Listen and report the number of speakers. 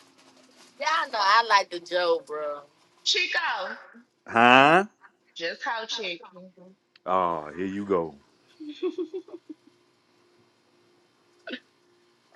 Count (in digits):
3